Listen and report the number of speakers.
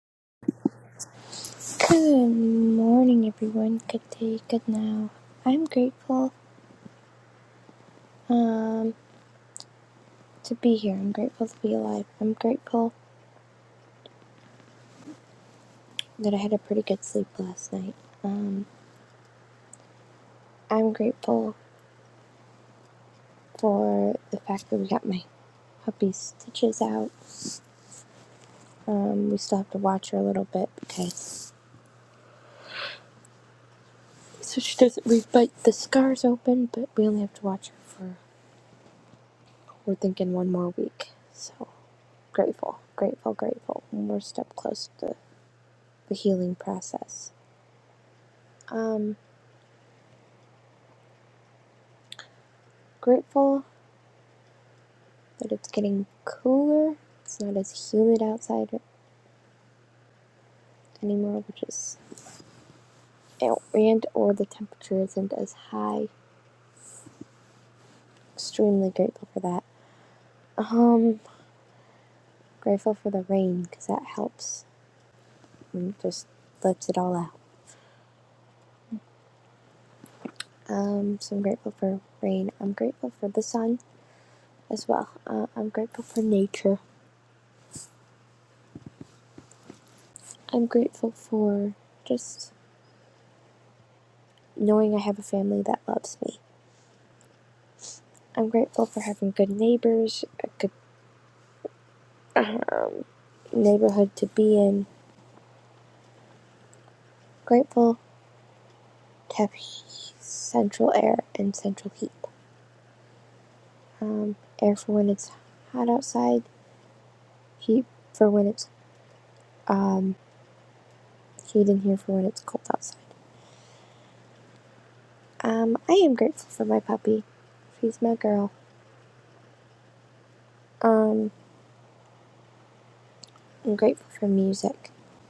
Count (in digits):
1